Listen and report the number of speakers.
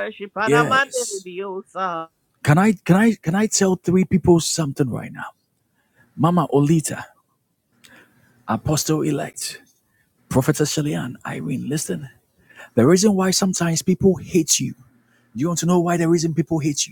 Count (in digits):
2